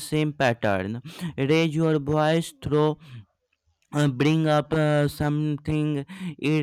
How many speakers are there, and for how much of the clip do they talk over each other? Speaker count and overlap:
1, no overlap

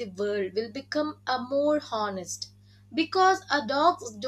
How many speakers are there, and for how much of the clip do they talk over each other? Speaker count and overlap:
1, no overlap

